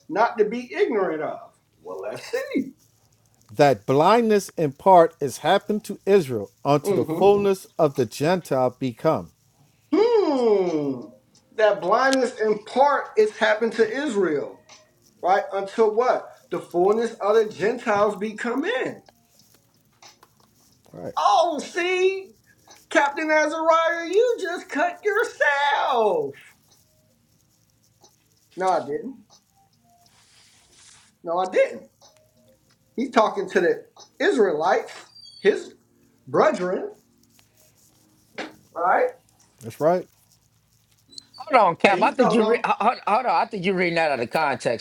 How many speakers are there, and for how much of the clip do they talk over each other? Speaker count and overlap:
three, about 3%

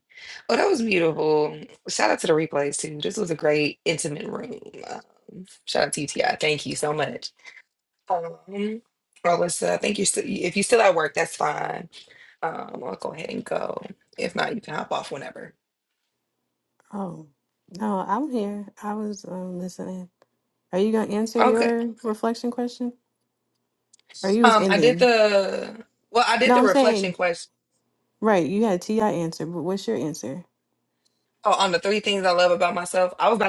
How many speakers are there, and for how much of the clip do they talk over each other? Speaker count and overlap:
two, about 5%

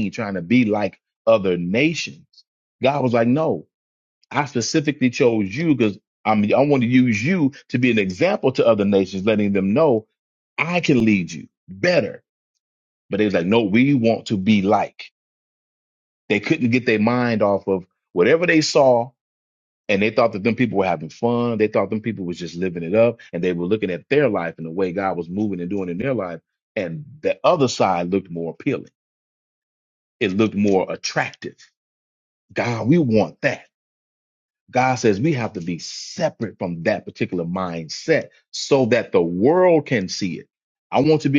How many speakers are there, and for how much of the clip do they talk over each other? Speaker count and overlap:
one, no overlap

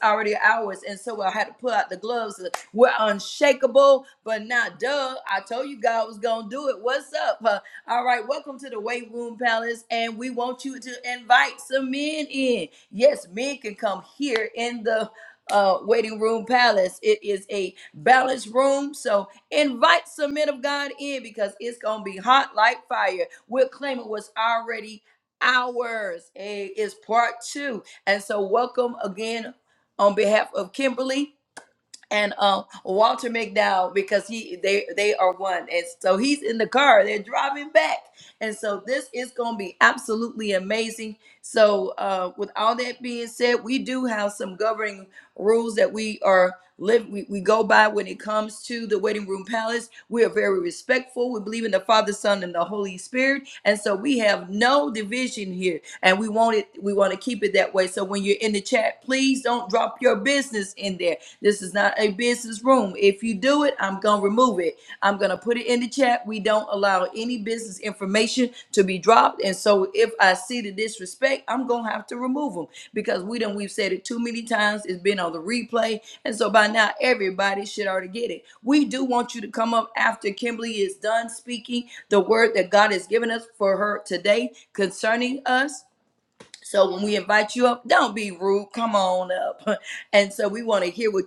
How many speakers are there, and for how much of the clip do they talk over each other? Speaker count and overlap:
one, no overlap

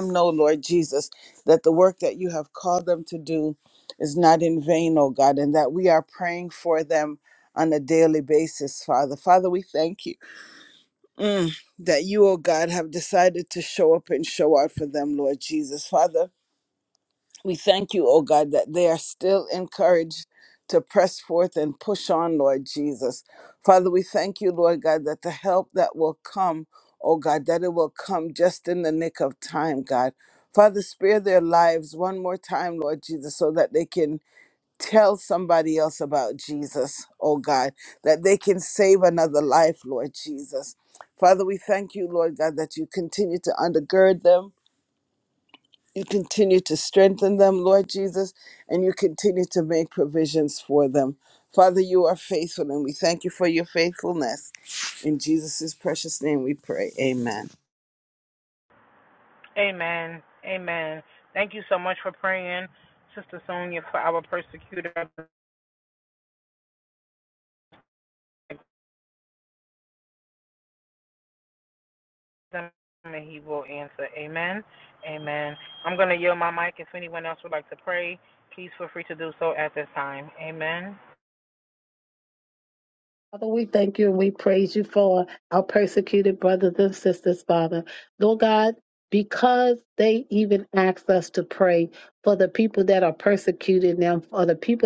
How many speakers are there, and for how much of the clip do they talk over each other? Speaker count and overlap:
three, no overlap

